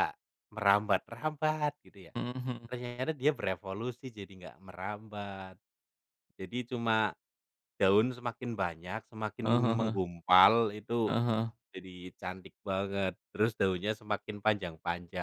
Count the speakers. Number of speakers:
2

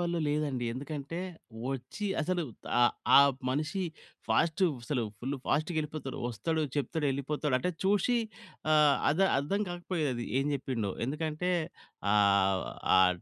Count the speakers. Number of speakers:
1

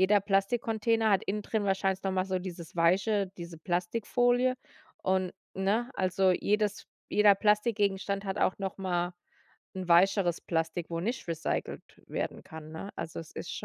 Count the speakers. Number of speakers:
1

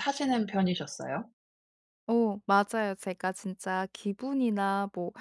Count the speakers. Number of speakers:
2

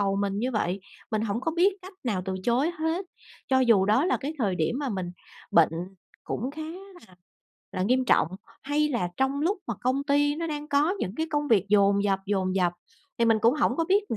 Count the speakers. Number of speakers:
1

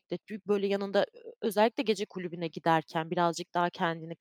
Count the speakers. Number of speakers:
1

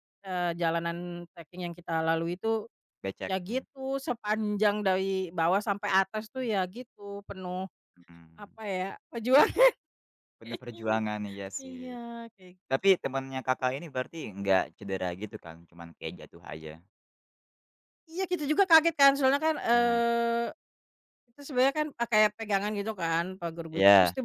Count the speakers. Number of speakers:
2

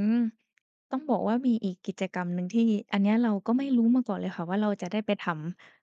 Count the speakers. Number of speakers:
1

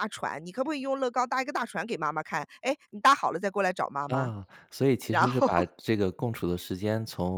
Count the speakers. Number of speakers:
2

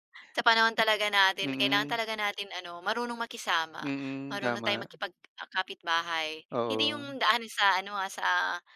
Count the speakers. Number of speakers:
2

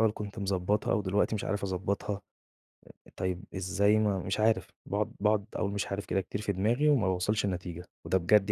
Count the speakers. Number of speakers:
1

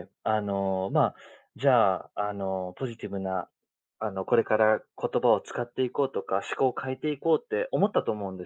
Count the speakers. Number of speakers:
1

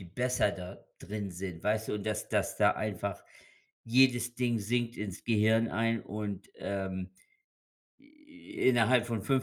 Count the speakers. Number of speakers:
1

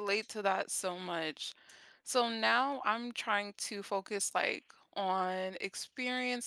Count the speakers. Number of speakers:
1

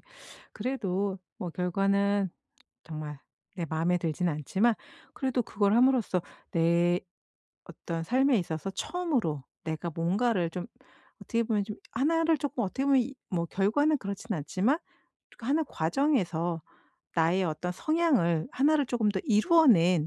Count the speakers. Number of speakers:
1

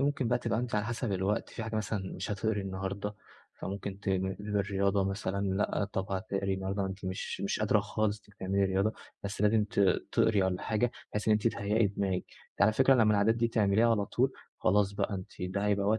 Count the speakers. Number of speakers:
1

